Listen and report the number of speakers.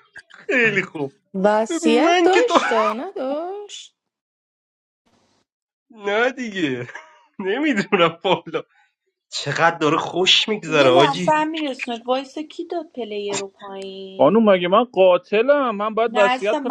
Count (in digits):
4